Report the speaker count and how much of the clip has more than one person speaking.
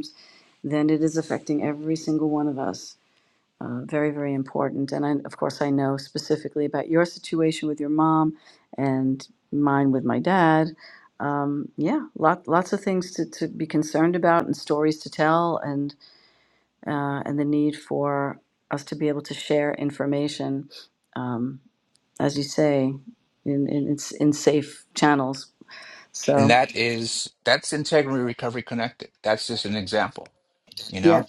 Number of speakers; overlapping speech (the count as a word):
two, about 2%